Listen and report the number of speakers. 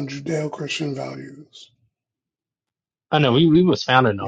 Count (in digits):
2